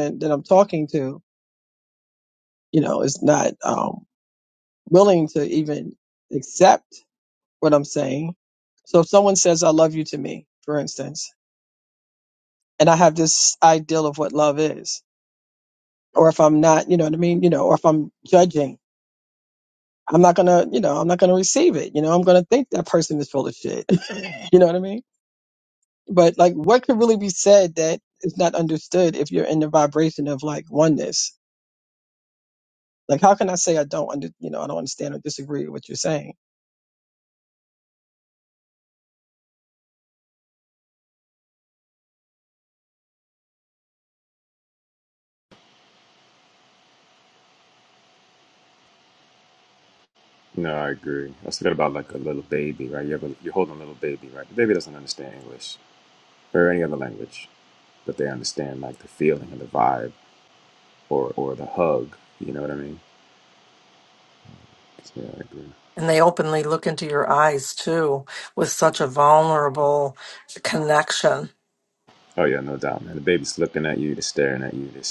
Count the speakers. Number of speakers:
three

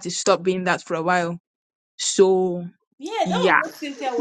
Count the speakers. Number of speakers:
two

